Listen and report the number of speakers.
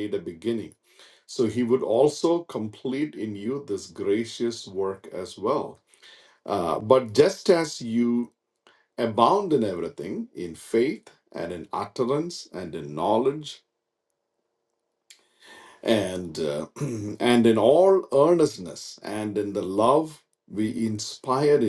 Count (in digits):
1